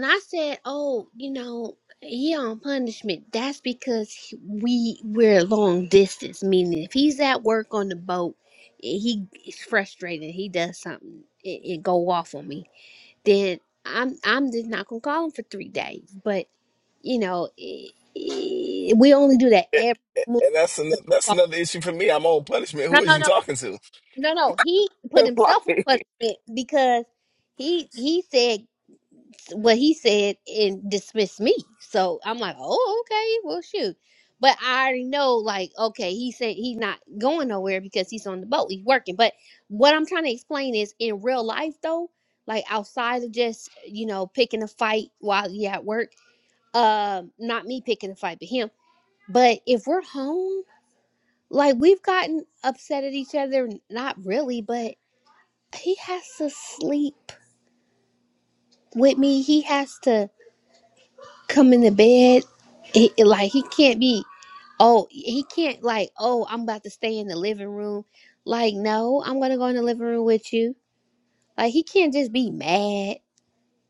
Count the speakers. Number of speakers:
2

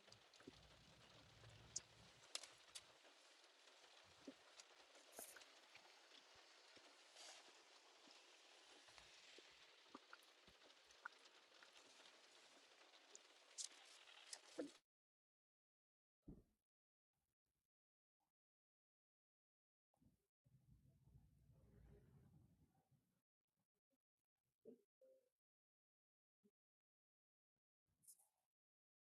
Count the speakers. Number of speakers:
0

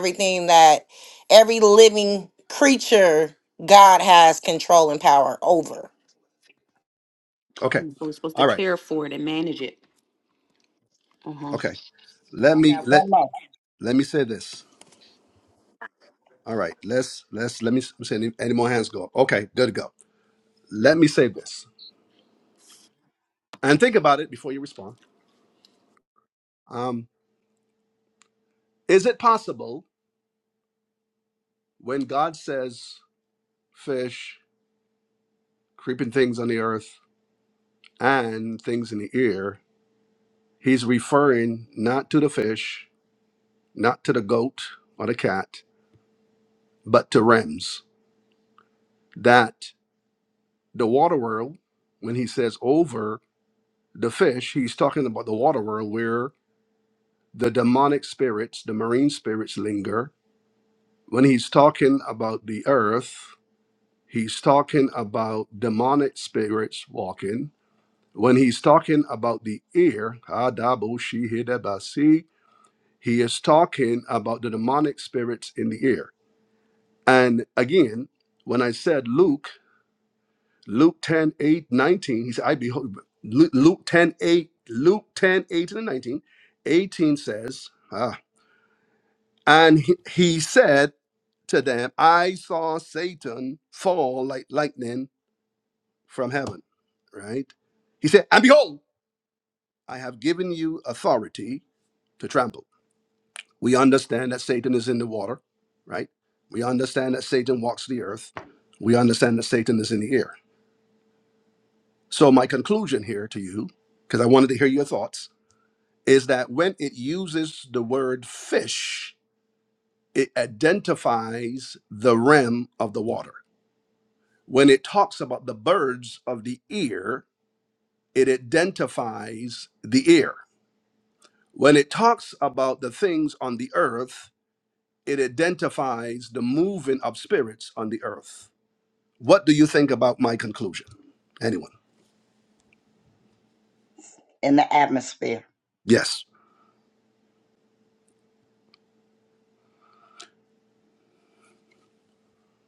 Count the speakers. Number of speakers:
4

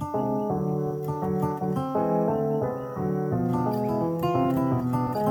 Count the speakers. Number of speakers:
0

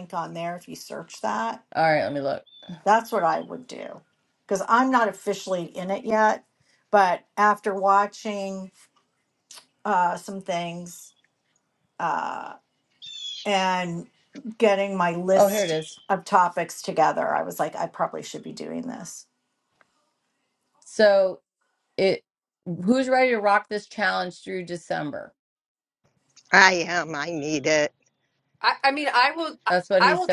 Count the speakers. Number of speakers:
4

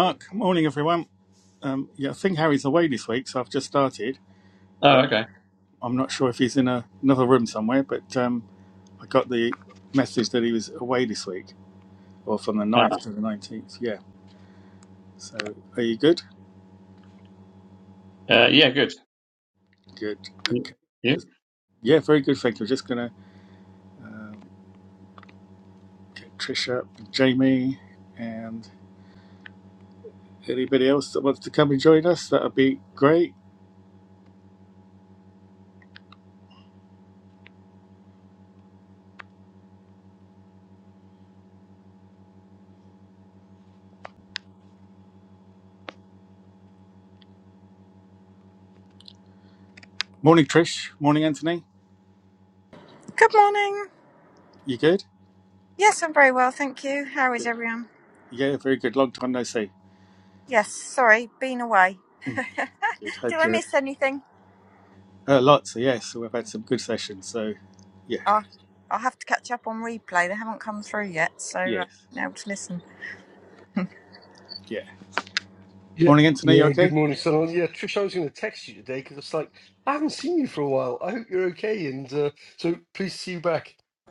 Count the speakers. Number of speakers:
4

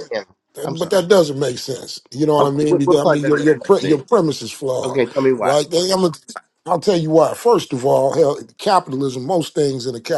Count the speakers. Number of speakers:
2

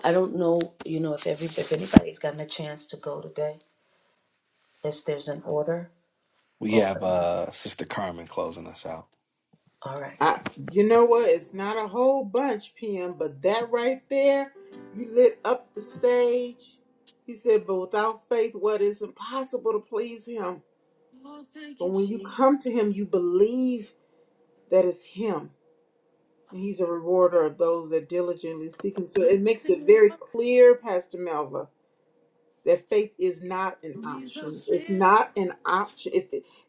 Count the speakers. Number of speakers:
3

